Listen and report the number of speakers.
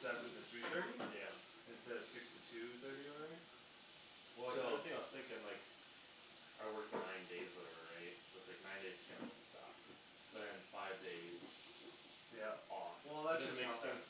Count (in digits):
2